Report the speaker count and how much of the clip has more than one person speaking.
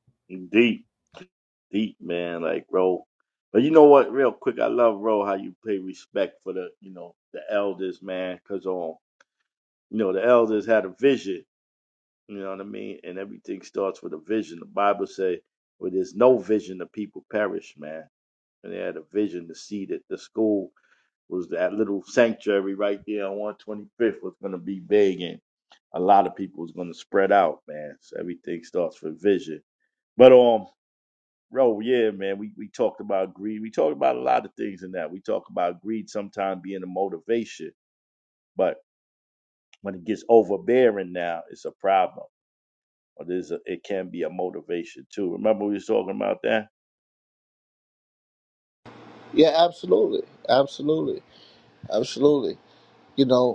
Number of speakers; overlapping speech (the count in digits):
2, no overlap